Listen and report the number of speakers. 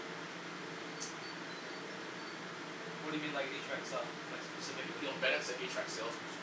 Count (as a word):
two